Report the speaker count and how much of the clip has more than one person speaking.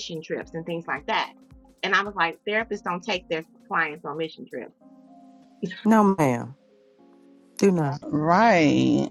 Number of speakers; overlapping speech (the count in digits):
3, no overlap